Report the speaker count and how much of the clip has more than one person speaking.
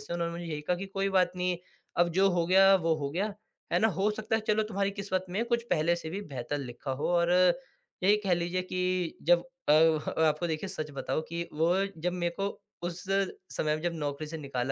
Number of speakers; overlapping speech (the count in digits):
1, no overlap